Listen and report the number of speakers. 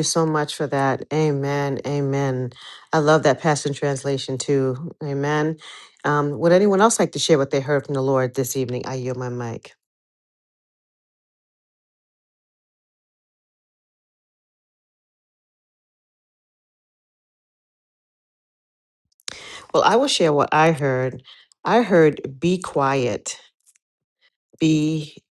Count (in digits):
1